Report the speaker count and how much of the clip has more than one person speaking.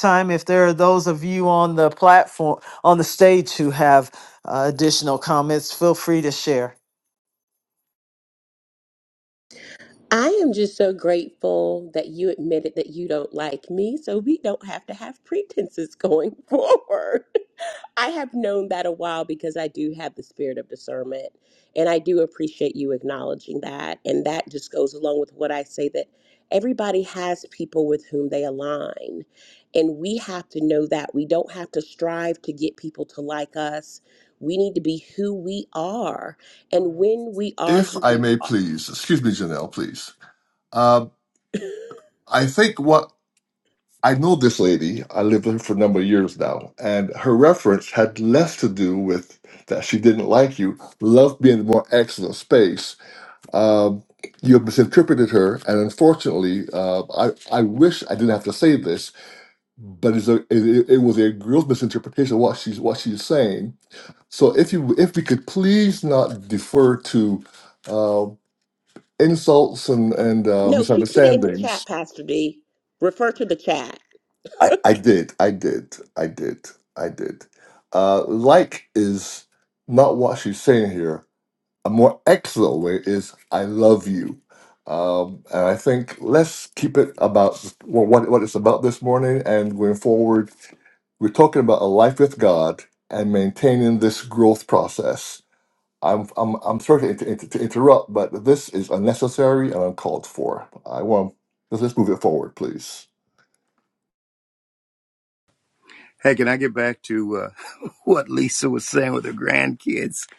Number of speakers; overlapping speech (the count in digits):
4, about 1%